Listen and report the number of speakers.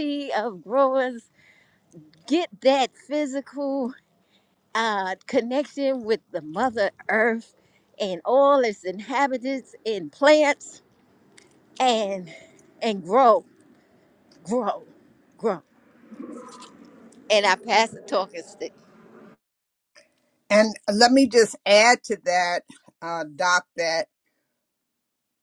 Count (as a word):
two